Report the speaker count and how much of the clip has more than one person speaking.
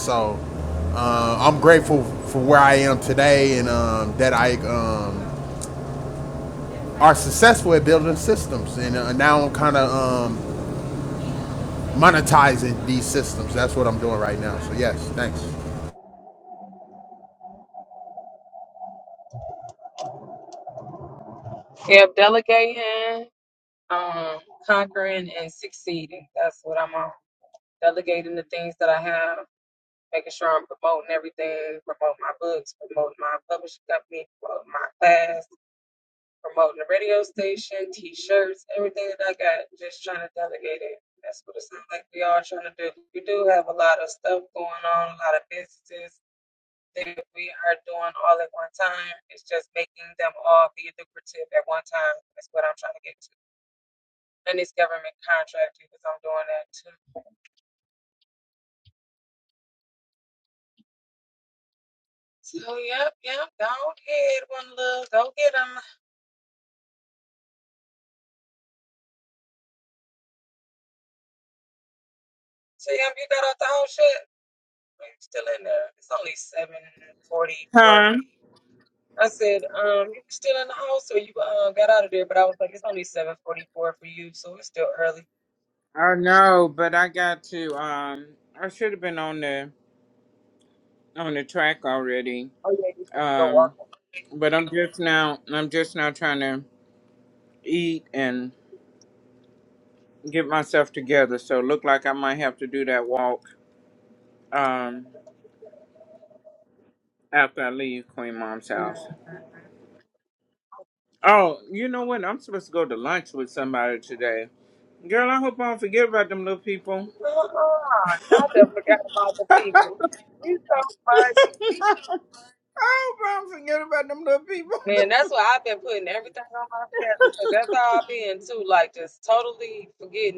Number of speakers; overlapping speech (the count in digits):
3, about 1%